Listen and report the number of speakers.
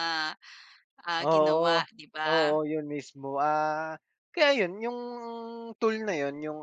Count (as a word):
two